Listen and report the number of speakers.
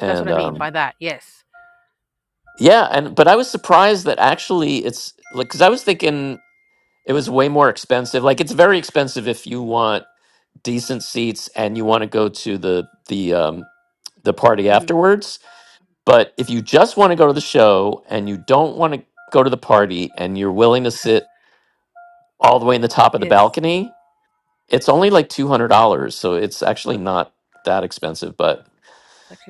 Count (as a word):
two